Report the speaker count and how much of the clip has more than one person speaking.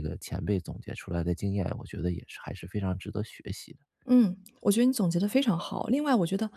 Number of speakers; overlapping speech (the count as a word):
two, no overlap